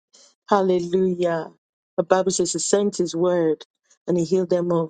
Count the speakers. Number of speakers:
one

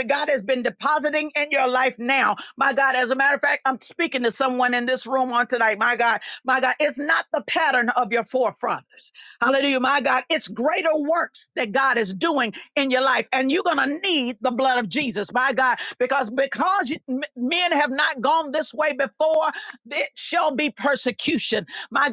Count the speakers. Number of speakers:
one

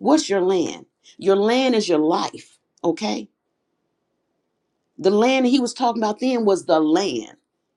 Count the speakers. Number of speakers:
one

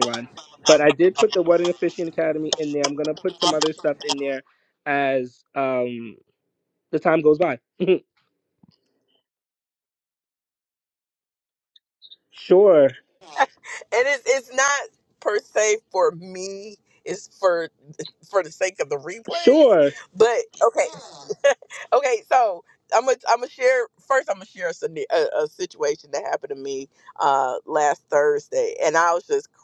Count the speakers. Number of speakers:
two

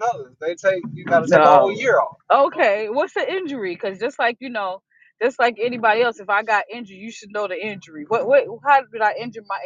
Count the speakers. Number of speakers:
two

